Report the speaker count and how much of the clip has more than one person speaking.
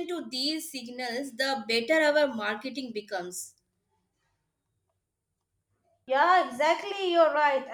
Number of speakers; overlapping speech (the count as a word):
two, no overlap